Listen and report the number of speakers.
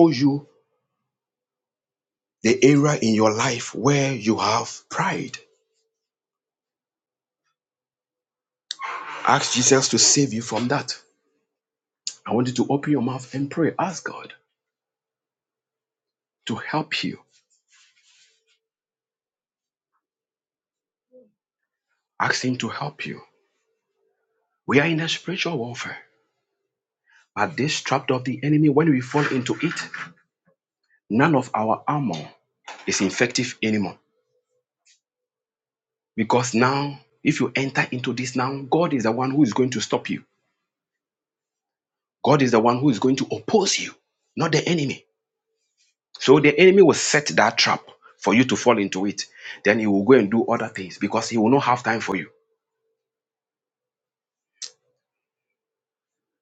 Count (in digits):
1